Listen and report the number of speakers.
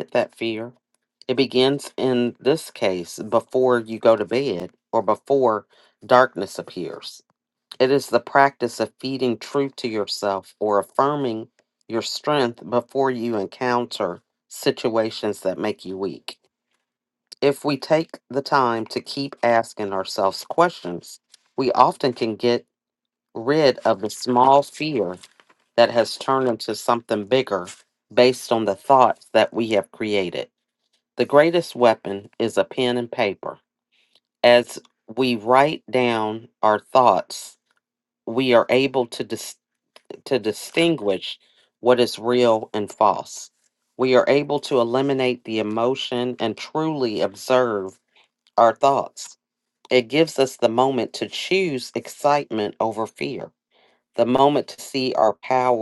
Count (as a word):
one